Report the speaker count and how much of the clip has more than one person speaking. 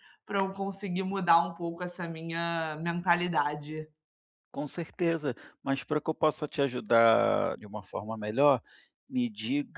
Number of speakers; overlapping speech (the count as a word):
two, no overlap